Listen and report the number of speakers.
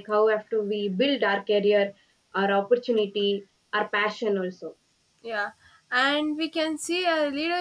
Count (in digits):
2